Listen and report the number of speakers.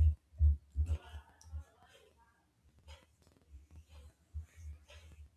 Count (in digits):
0